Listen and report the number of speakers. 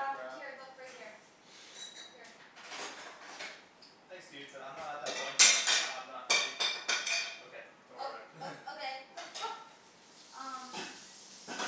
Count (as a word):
two